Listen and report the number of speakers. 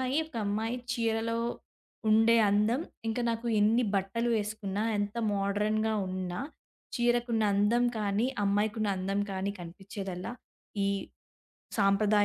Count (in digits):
1